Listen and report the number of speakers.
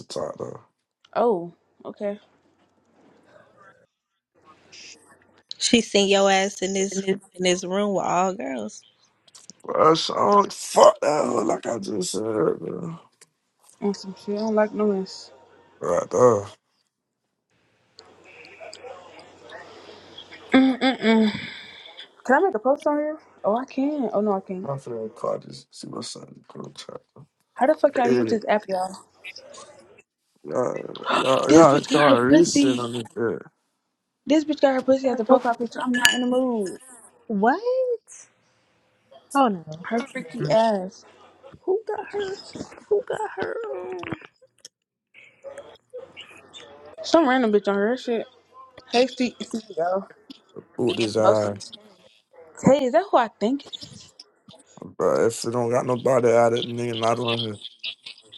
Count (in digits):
4